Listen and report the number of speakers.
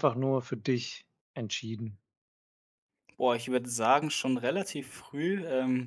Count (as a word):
two